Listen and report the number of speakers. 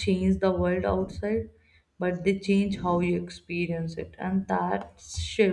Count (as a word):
one